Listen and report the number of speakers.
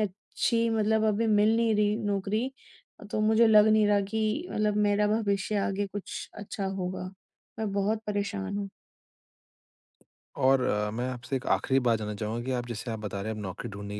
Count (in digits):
2